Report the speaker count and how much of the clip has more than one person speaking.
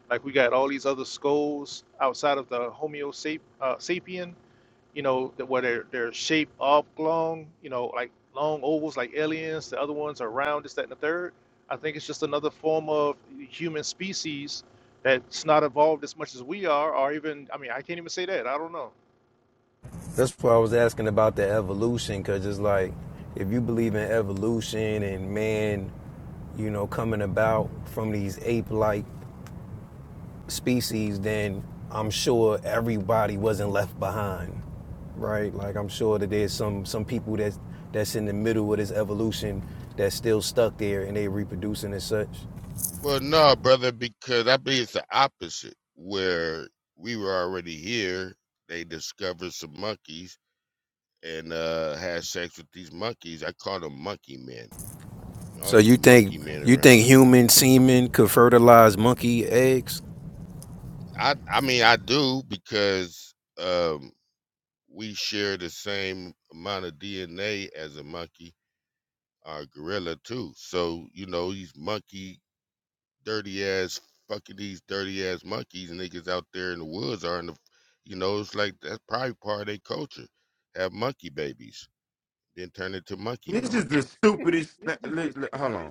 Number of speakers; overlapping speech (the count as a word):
four, about 2%